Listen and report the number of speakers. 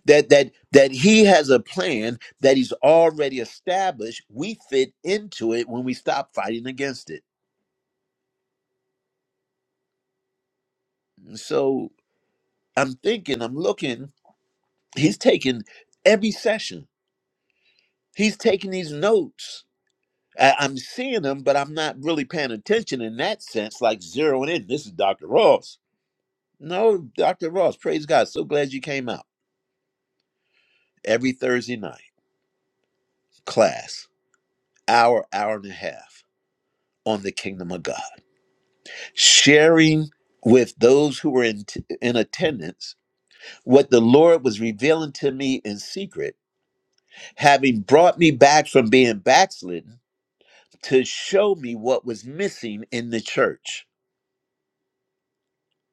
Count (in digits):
1